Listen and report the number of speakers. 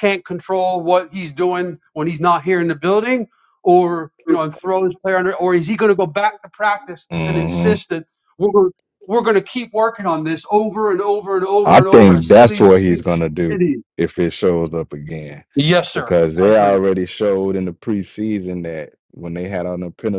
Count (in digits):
2